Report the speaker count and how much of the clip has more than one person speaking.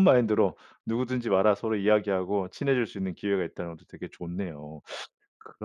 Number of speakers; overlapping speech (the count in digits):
1, no overlap